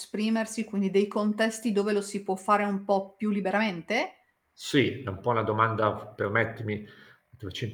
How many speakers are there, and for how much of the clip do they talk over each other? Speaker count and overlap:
two, no overlap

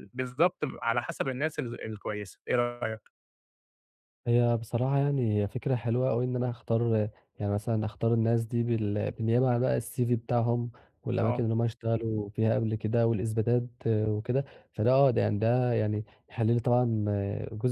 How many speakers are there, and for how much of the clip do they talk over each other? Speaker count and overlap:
two, about 1%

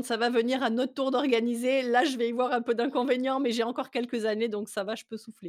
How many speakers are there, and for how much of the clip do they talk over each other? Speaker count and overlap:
one, no overlap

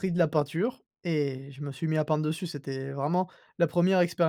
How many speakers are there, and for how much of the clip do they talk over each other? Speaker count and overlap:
one, no overlap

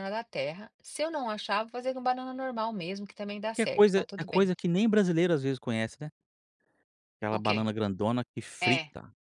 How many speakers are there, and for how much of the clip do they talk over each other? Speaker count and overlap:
two, about 16%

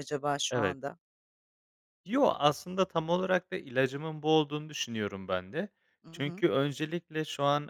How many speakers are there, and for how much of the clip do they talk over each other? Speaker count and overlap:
two, about 6%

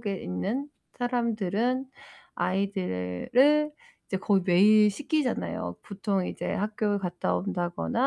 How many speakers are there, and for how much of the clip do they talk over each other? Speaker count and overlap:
one, no overlap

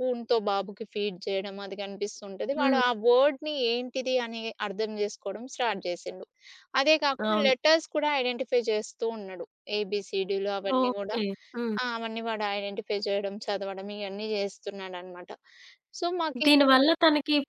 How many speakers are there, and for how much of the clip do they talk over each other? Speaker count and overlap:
two, about 8%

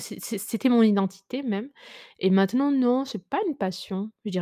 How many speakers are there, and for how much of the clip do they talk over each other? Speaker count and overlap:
one, no overlap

